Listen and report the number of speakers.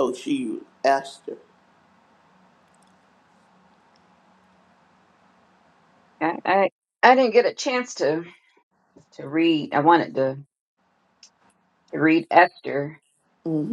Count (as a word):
two